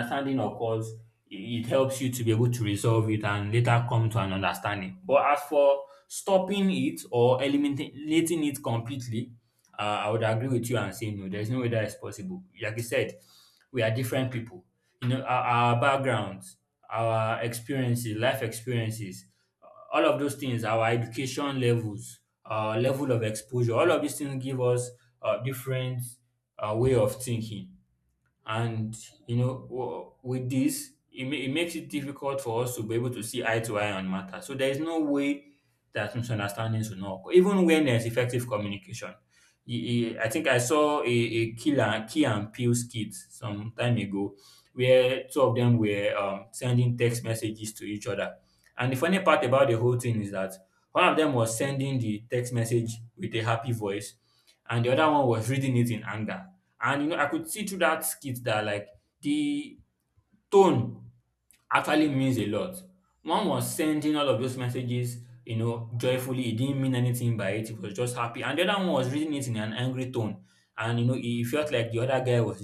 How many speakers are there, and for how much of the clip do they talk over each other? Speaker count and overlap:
one, no overlap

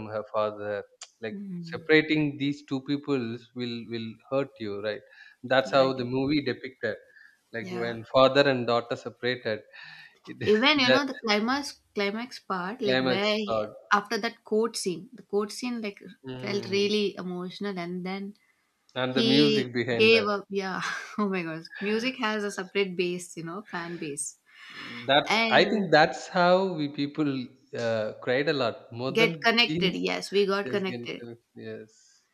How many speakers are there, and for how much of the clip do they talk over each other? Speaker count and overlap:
two, about 16%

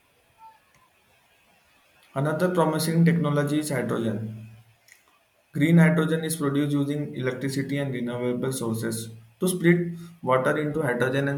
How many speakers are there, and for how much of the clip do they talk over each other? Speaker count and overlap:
one, no overlap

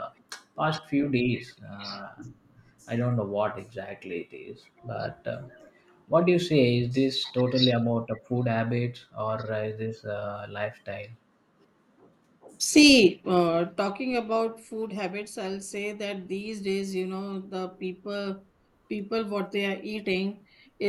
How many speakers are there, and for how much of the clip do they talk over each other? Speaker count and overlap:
two, no overlap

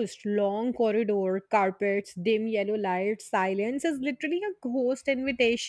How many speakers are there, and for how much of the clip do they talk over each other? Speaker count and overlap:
one, no overlap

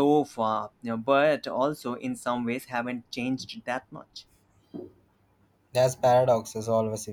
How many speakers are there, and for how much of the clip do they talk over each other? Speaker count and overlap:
two, no overlap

